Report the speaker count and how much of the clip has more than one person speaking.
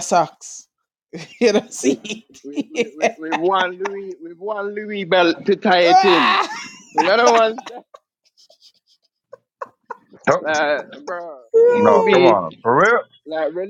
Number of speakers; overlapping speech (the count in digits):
3, about 16%